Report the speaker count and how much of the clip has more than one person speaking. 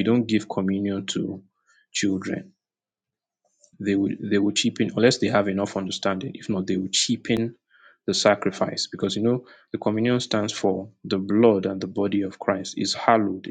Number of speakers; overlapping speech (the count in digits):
1, no overlap